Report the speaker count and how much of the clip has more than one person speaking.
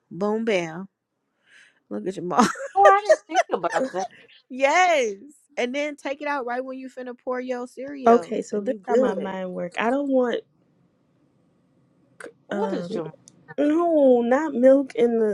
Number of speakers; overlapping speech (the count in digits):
3, about 12%